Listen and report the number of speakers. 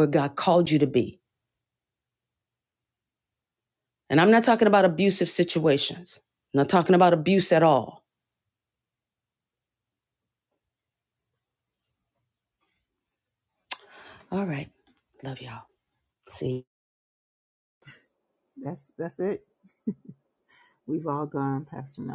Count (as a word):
two